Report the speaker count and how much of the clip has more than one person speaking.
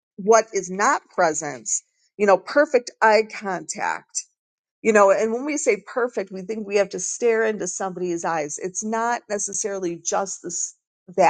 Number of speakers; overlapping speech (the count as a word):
one, no overlap